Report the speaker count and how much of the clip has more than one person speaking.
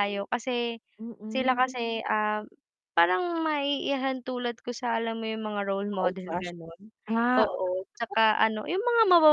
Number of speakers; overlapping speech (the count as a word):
two, about 12%